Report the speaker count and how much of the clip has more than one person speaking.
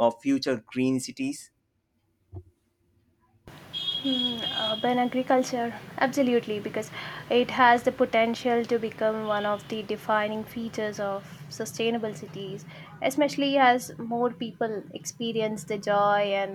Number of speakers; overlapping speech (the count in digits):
2, no overlap